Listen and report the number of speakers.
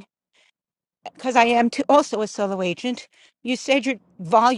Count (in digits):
1